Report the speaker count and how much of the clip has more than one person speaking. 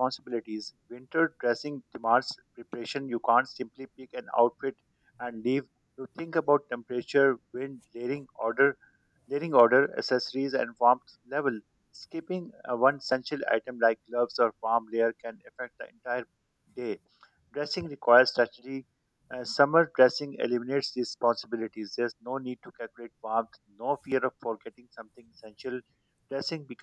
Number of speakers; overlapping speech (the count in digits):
1, no overlap